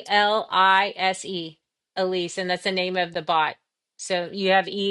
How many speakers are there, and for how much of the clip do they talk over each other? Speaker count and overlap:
1, no overlap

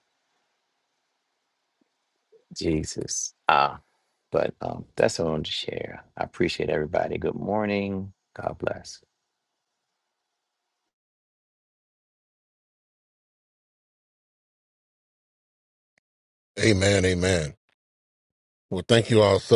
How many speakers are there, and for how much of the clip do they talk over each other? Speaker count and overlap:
2, no overlap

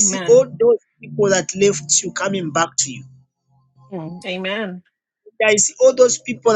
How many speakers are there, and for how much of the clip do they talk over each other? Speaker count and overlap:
2, about 7%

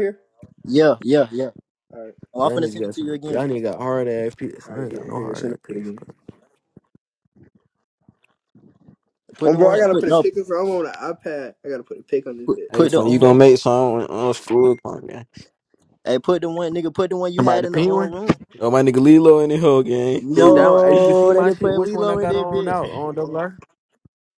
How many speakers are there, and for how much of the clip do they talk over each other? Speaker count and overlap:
4, about 29%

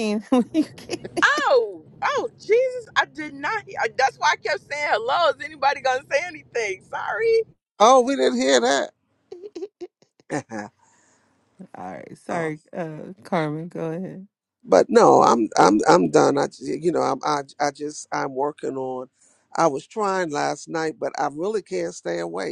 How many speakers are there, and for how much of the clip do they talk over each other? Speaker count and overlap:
3, about 1%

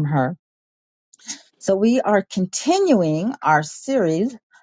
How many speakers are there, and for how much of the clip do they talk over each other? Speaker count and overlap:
1, no overlap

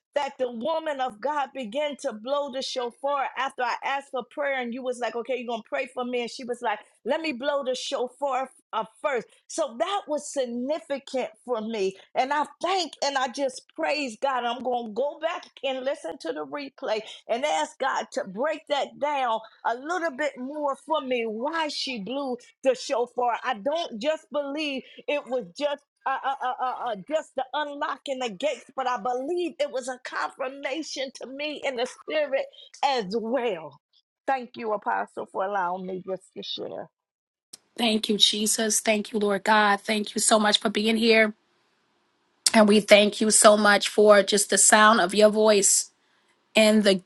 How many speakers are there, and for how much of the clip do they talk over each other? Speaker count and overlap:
2, no overlap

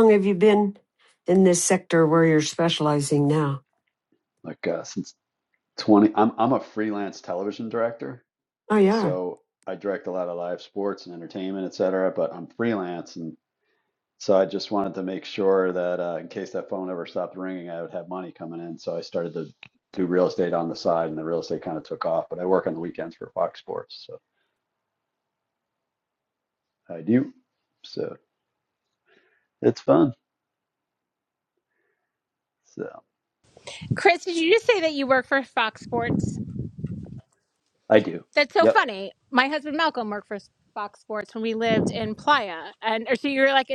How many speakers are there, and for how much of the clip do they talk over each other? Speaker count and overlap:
3, about 1%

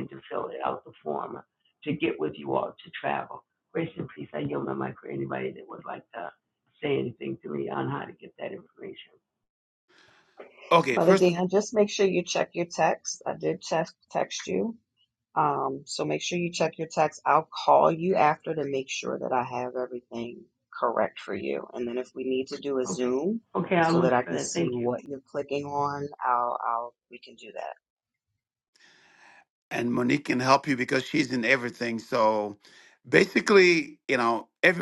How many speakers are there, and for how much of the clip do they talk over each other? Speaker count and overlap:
3, about 5%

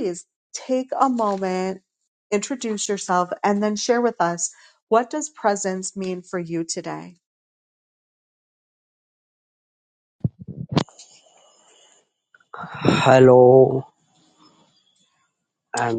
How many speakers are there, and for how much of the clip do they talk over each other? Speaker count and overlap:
2, no overlap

